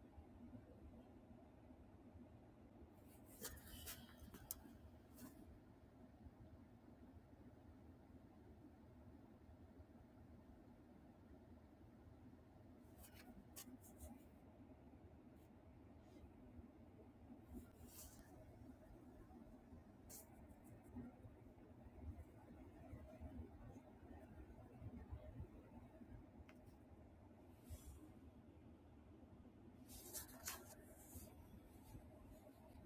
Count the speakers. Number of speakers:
zero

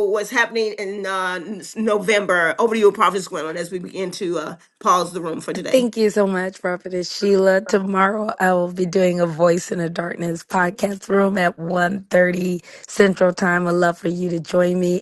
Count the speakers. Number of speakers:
two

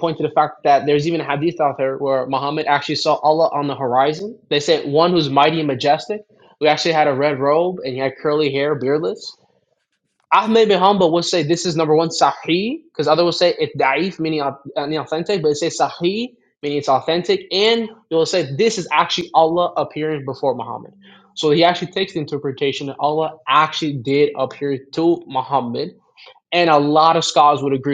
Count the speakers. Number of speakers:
one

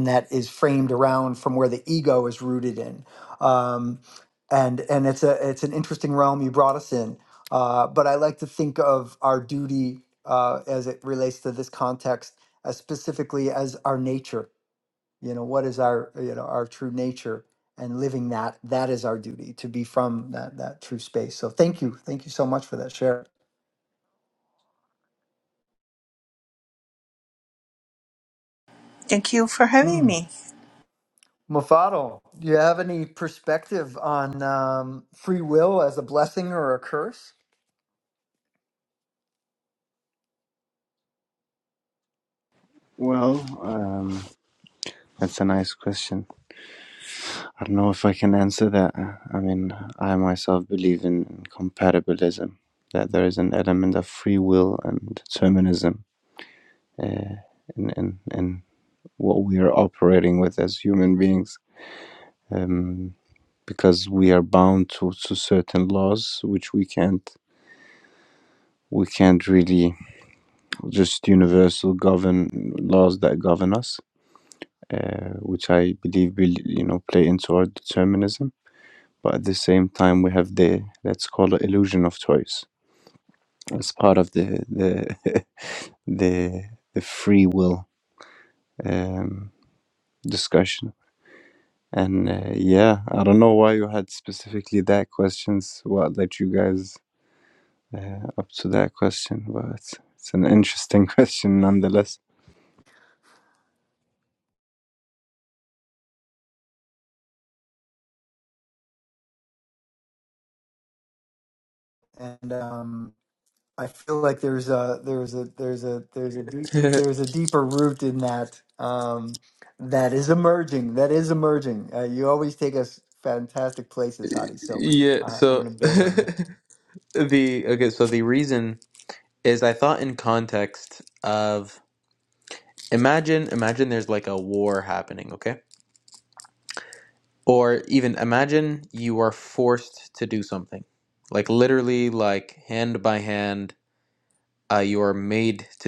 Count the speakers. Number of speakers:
four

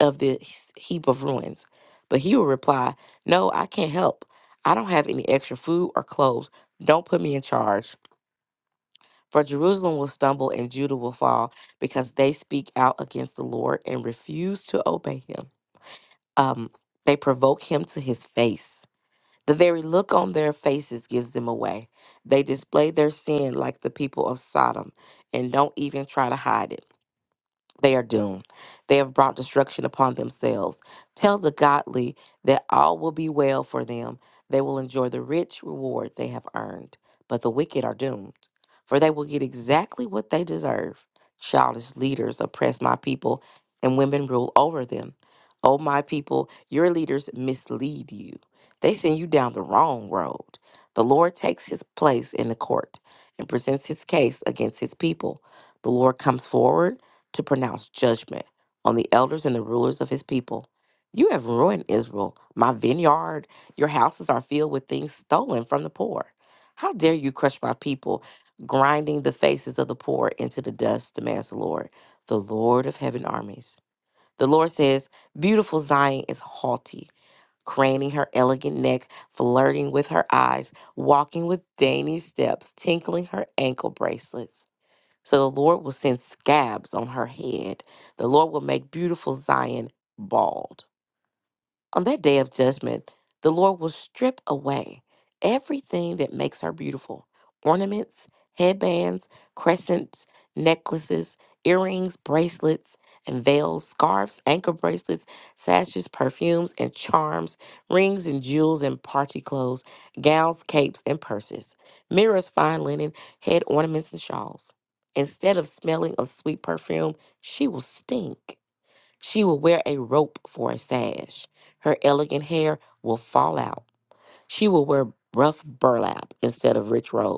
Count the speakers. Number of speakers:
one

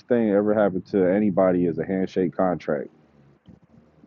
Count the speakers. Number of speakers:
one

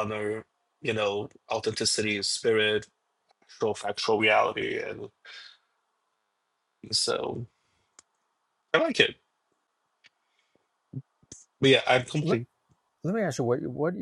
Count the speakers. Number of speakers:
two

